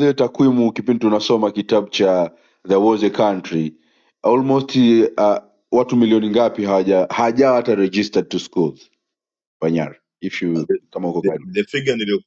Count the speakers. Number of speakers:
2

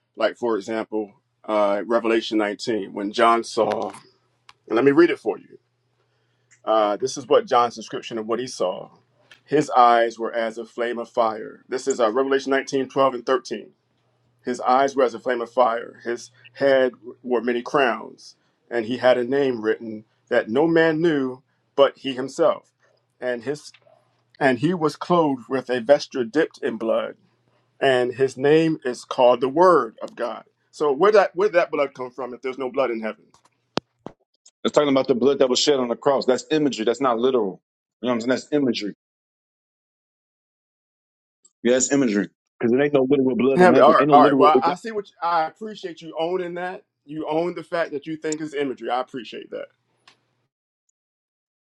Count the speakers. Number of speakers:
2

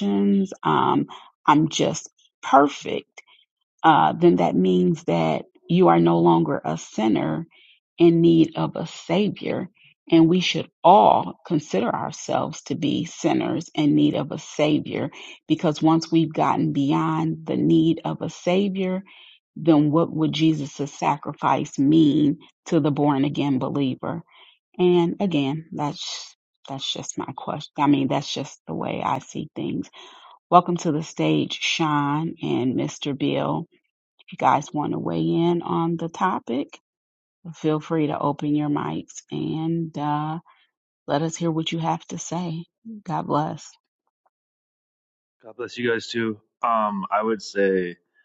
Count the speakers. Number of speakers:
2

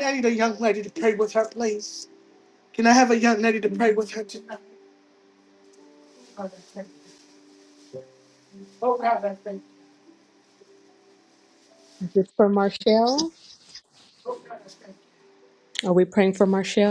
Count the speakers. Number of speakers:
2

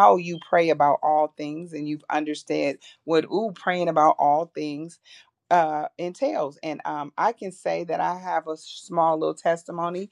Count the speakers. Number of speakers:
1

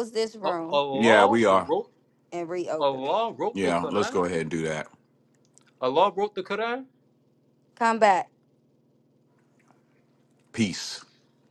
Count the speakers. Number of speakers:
3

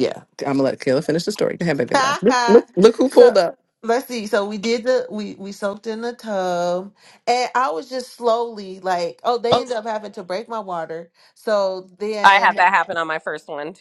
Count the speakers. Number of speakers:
3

